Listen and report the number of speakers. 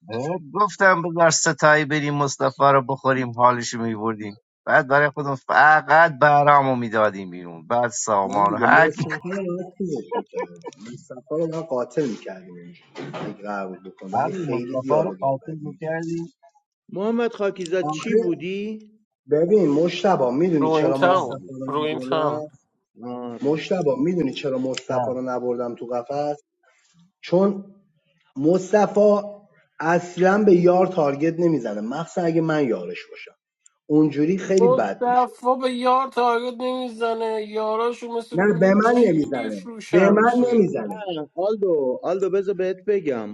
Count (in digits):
4